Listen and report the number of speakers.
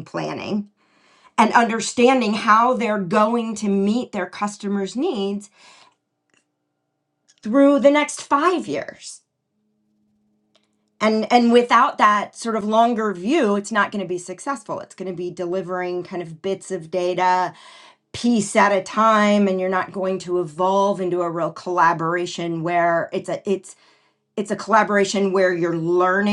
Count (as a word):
one